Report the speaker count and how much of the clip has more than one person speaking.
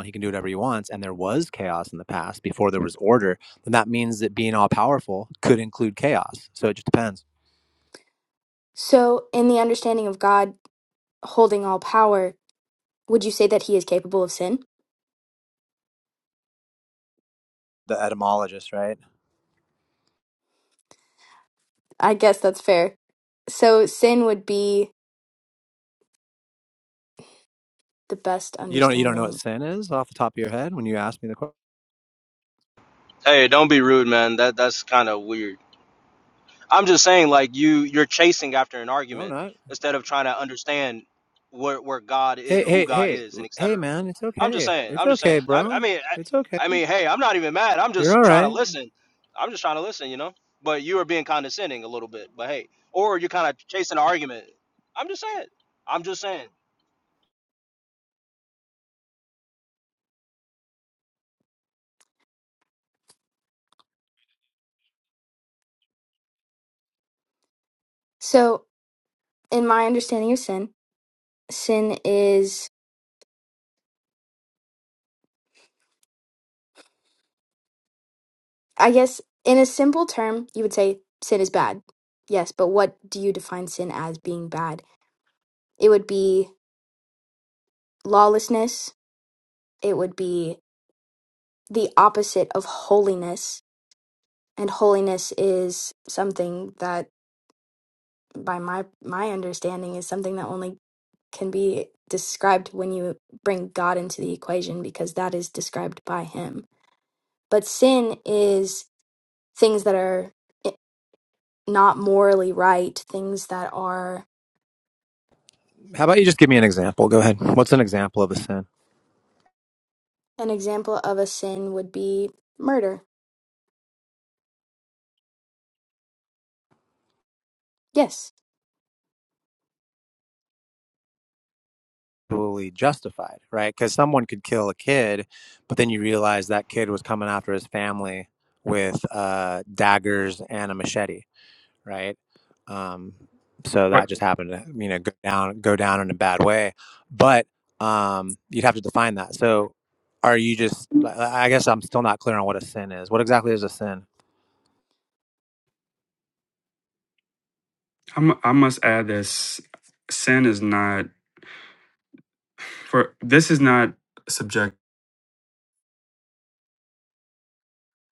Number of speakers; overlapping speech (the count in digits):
4, about 2%